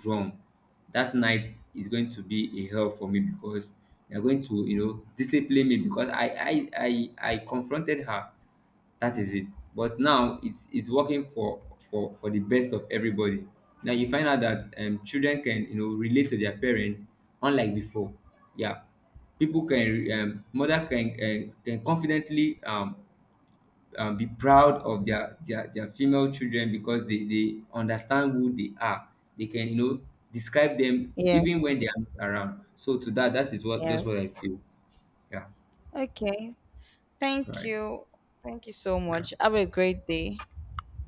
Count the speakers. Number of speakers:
2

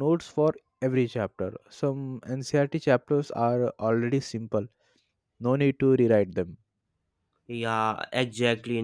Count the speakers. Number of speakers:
2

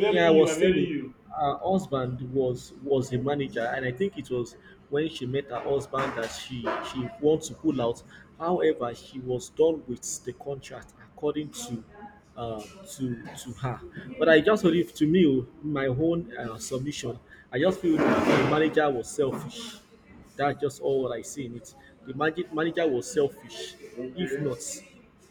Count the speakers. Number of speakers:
2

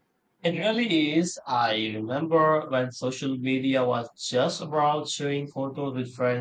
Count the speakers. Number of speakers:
1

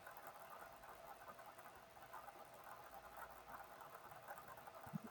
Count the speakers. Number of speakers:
0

